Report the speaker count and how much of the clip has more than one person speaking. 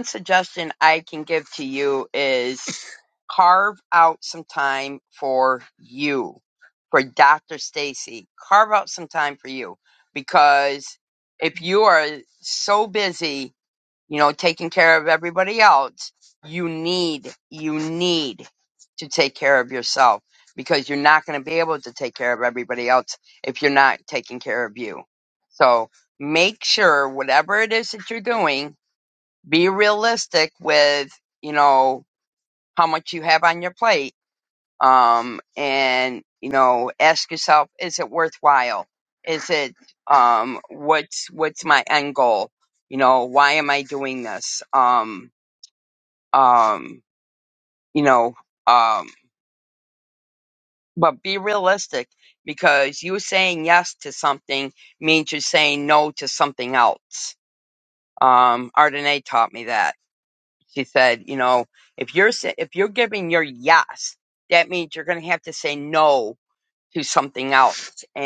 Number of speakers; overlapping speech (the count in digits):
1, no overlap